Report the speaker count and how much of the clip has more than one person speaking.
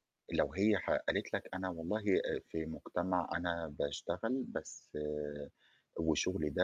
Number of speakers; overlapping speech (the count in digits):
1, no overlap